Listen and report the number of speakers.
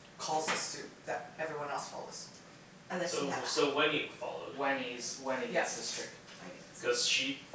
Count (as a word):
three